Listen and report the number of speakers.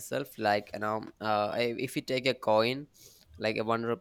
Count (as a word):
one